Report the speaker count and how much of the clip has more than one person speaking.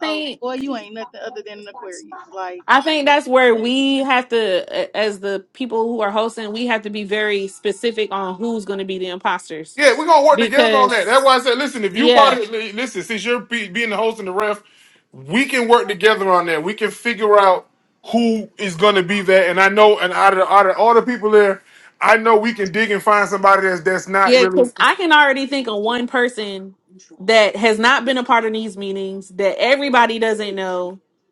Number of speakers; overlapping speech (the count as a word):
three, about 6%